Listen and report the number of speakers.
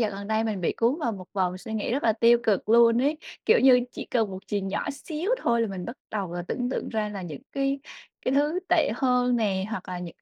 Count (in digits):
1